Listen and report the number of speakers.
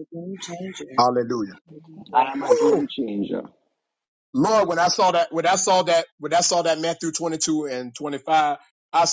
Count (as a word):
three